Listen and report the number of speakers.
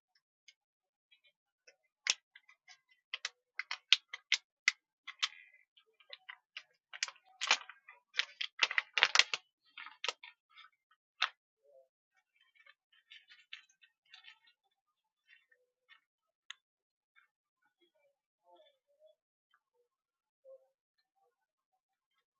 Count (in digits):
0